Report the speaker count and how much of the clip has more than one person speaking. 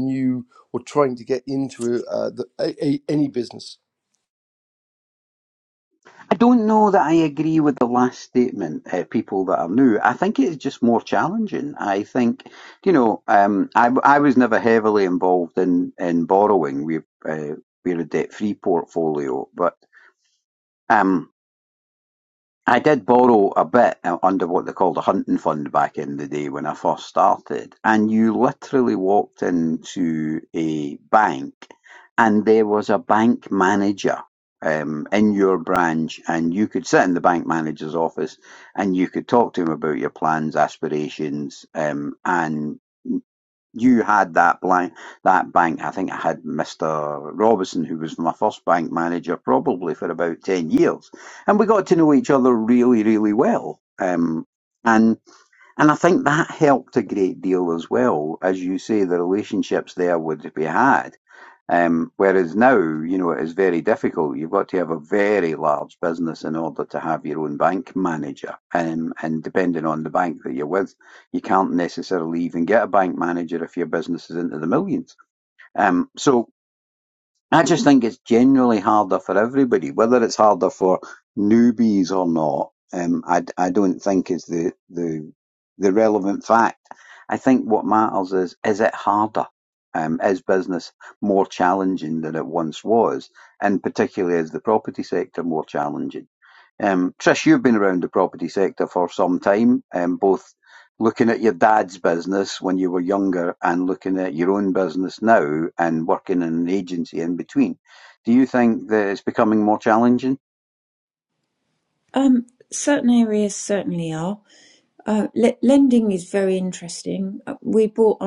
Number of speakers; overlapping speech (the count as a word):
three, no overlap